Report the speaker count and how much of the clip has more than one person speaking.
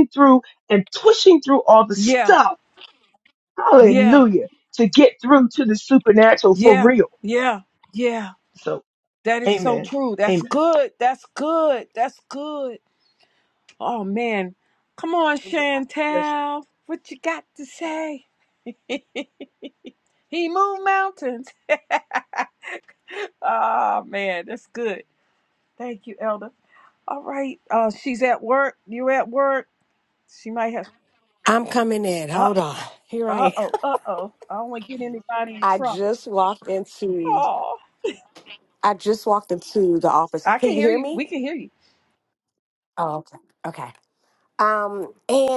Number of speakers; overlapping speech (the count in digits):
3, about 9%